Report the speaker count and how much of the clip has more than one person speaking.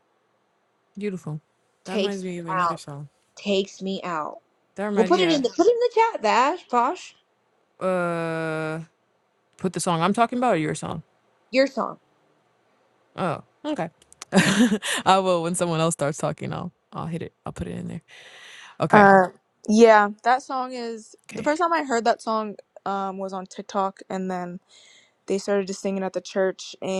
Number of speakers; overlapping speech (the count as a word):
three, about 7%